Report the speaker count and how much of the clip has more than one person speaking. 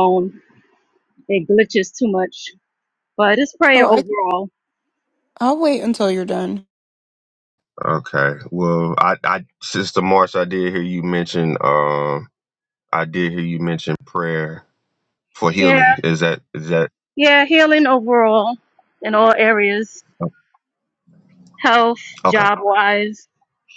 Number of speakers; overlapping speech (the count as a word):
three, about 4%